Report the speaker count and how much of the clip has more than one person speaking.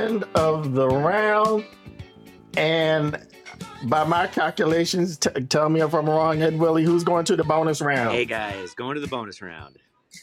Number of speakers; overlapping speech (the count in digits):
2, about 2%